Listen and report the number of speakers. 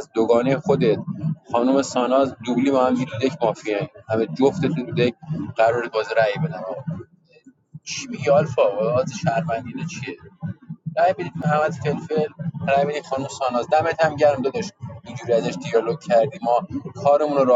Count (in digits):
1